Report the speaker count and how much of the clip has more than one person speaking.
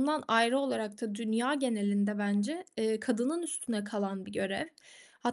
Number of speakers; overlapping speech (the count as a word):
one, no overlap